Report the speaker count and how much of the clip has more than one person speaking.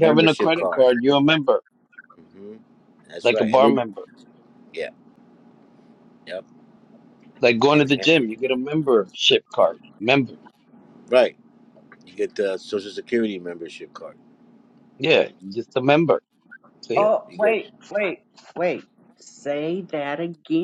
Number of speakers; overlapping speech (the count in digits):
3, about 12%